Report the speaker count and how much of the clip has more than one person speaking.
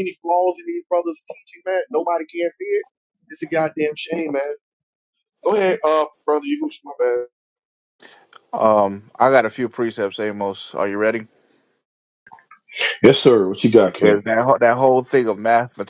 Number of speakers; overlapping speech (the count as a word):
three, about 1%